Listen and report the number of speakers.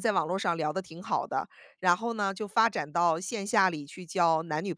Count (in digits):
1